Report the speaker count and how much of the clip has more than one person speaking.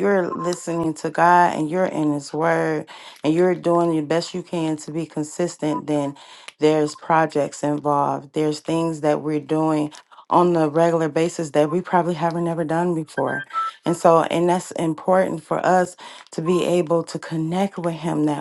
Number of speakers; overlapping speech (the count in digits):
1, no overlap